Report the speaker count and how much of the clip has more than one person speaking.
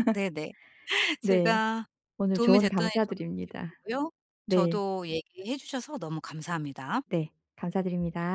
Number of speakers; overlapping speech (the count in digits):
2, about 17%